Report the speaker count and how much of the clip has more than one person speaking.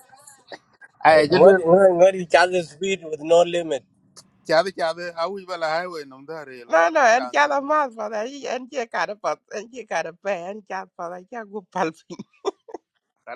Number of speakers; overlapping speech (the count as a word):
three, about 10%